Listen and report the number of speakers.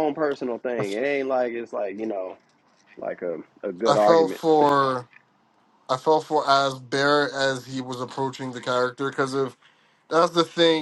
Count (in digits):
2